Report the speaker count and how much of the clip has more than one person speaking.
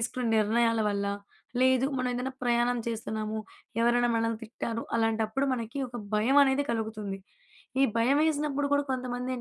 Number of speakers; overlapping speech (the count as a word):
one, no overlap